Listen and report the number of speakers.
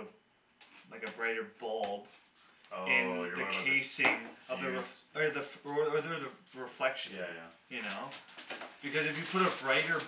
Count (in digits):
2